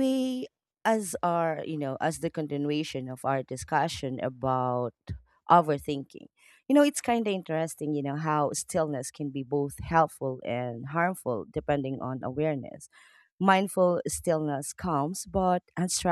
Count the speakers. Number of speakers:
1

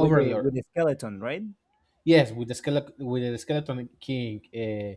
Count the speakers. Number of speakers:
2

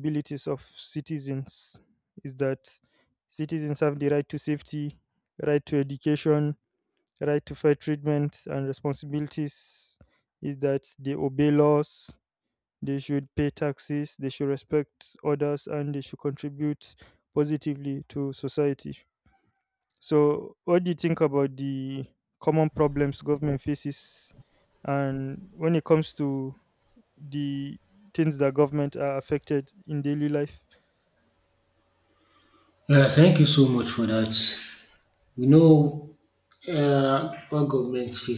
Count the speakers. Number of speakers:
2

